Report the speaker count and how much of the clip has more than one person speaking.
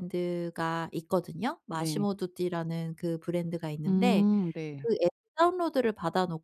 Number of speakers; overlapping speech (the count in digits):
2, about 11%